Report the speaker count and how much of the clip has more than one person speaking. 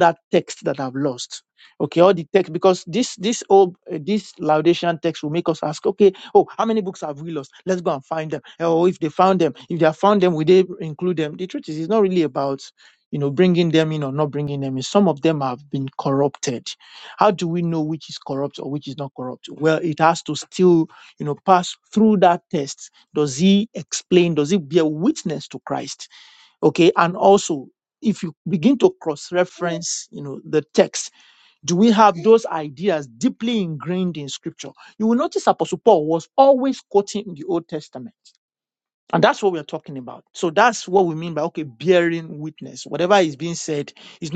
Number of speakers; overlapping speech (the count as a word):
one, no overlap